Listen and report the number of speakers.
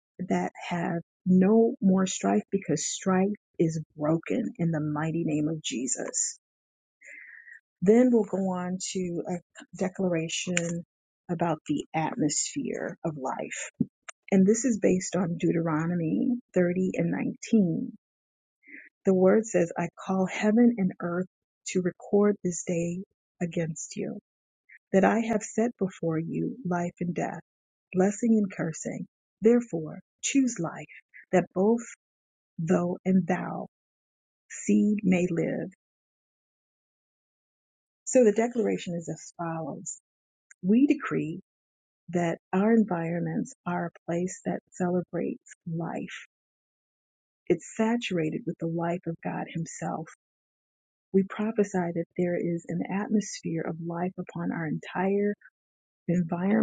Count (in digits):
1